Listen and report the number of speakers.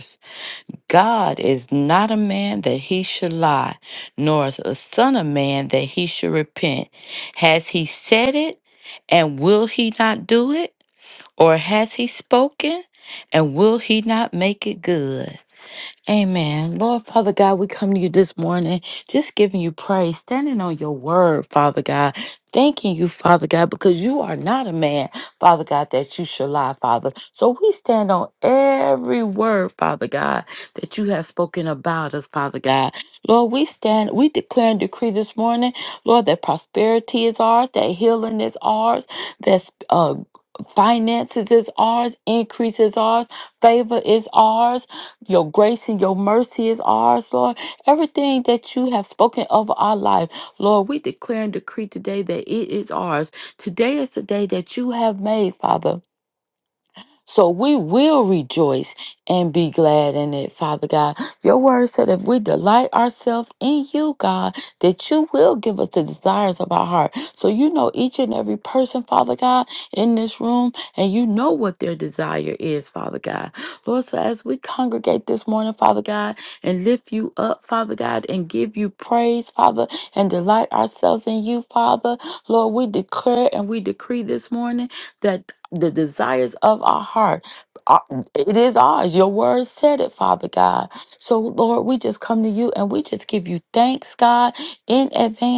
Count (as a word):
one